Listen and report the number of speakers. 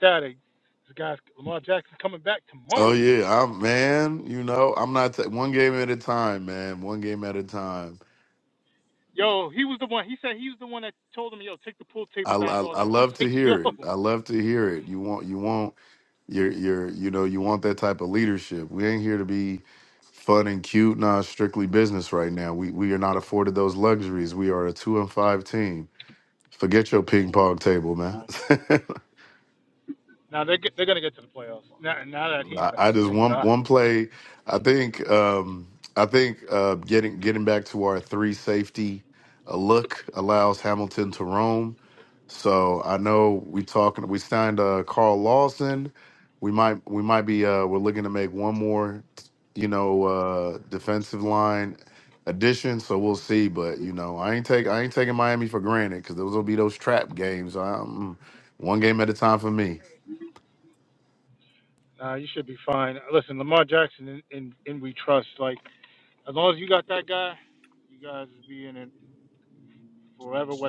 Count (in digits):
2